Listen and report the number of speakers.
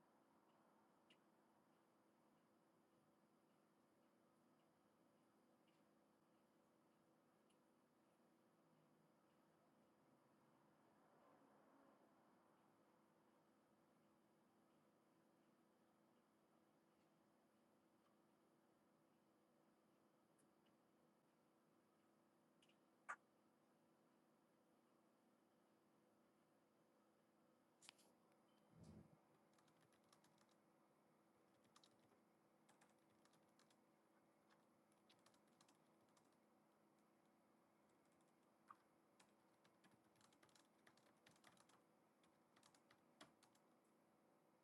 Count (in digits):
0